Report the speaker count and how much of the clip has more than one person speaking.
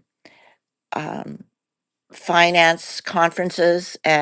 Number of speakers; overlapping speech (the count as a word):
one, no overlap